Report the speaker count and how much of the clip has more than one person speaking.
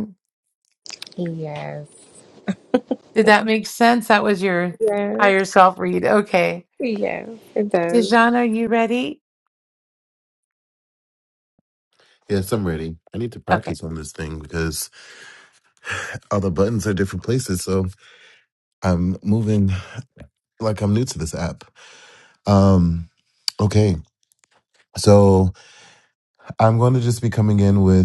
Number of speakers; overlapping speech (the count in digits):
3, about 3%